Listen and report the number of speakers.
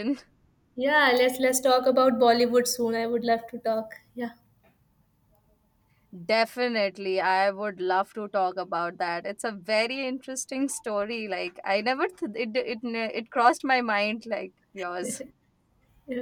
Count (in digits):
2